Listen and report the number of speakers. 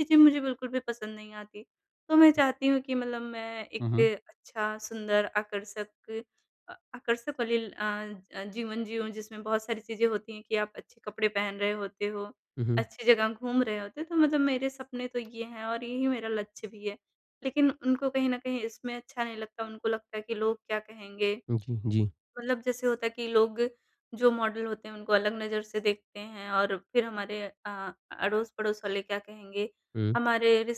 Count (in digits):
2